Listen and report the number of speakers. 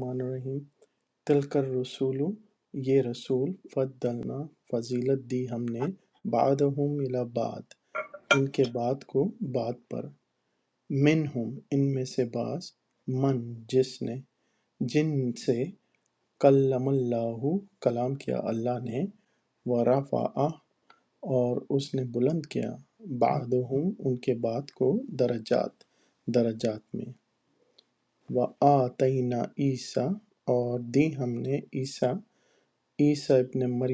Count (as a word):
one